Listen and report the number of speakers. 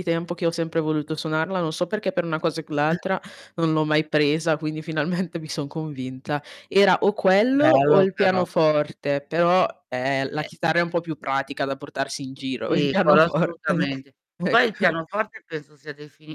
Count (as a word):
two